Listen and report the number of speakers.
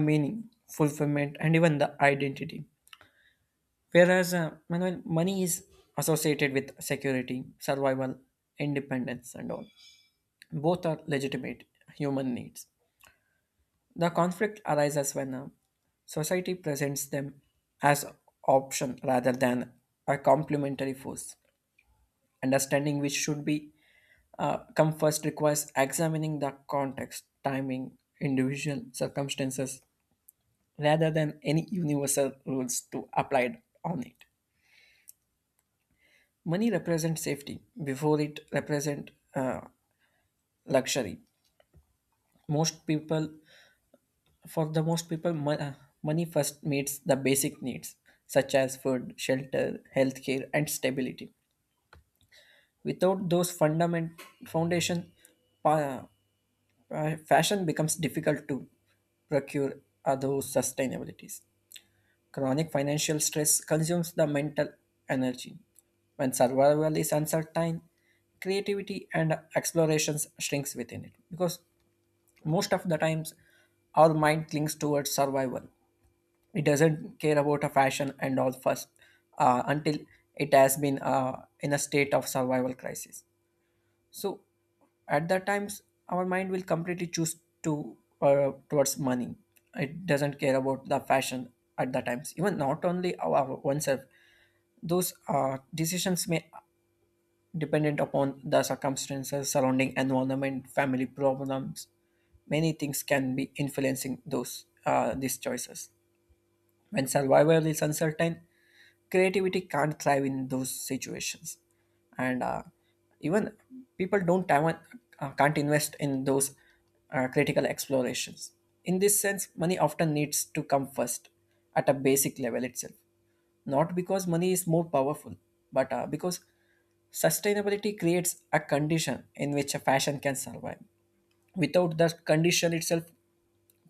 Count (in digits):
1